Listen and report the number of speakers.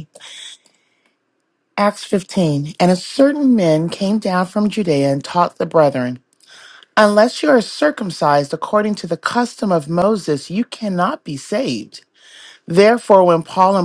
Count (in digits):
1